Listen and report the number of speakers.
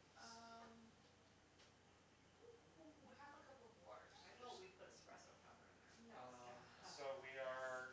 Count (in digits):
3